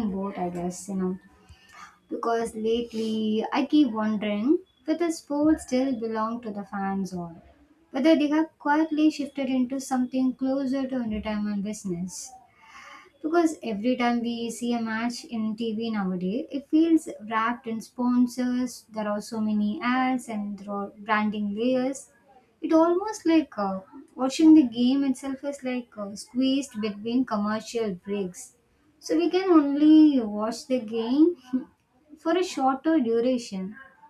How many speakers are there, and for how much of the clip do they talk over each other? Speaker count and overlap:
1, no overlap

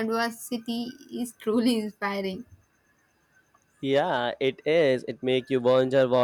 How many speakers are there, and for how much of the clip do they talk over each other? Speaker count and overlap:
2, no overlap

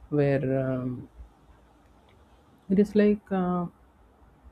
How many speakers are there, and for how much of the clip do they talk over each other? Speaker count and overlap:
1, no overlap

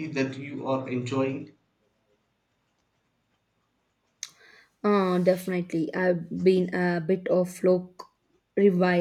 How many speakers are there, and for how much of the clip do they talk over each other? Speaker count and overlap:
2, no overlap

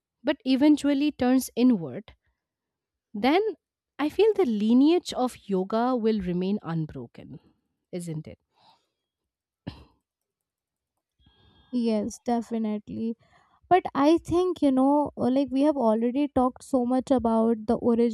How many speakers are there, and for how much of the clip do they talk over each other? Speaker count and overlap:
2, no overlap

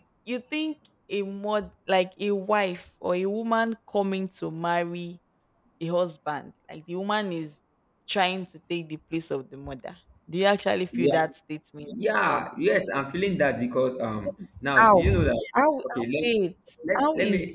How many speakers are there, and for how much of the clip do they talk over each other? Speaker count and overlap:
2, about 15%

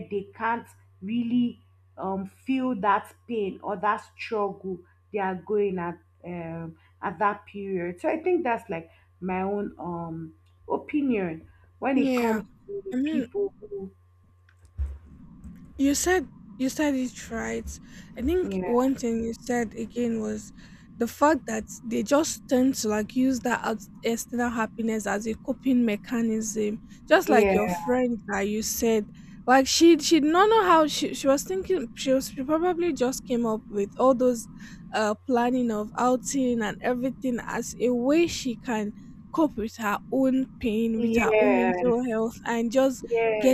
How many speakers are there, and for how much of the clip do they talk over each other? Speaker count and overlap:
2, about 7%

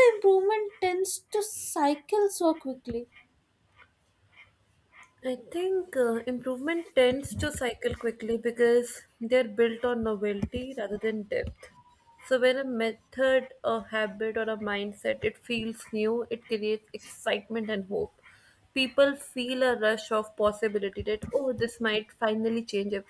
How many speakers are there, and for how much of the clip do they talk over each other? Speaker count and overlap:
2, no overlap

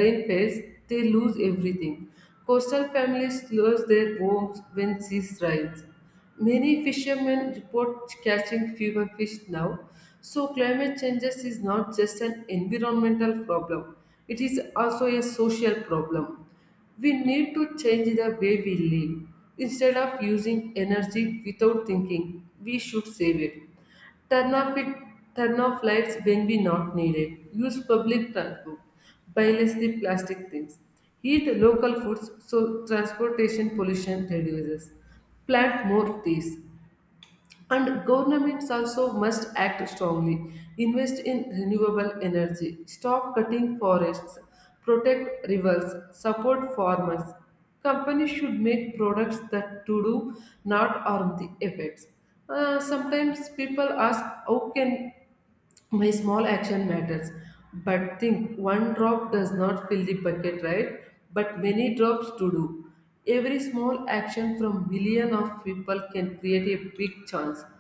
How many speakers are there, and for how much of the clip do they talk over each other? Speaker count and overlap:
1, no overlap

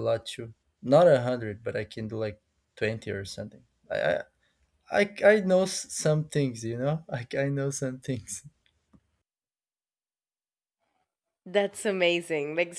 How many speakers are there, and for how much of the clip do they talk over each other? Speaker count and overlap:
2, no overlap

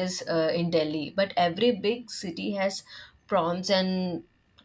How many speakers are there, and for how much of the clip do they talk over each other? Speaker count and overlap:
1, no overlap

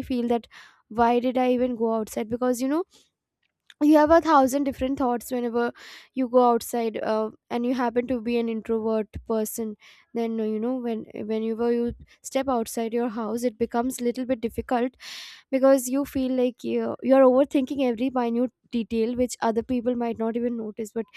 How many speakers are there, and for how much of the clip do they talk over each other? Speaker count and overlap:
1, no overlap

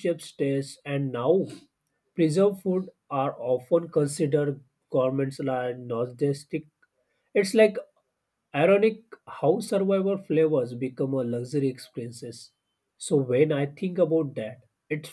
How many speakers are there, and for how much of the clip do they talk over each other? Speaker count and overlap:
1, no overlap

